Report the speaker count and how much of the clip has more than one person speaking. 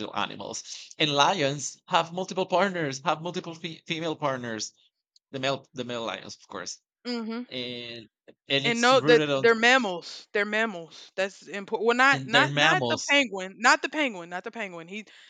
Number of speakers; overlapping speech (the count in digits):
2, about 12%